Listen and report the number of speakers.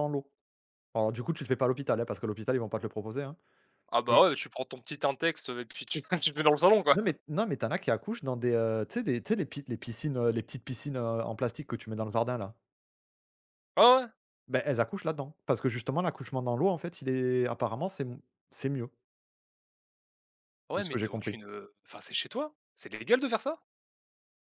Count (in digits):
2